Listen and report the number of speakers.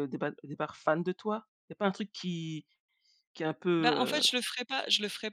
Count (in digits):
2